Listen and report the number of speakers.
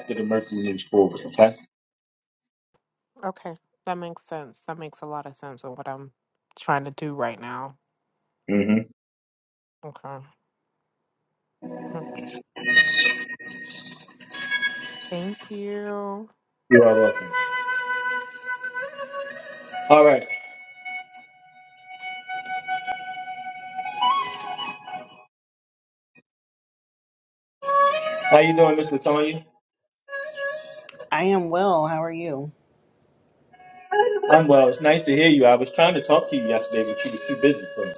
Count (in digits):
3